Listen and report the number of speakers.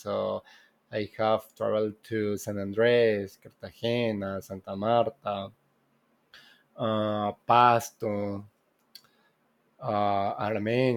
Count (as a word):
one